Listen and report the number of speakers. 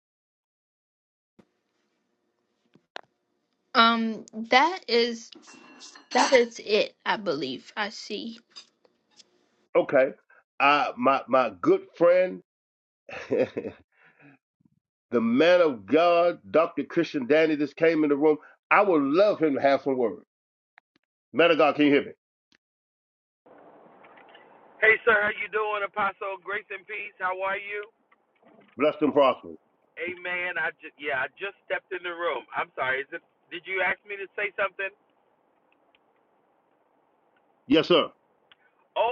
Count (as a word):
three